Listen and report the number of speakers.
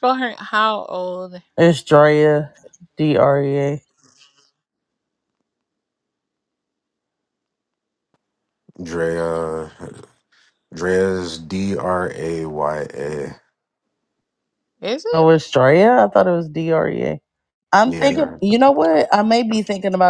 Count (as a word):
three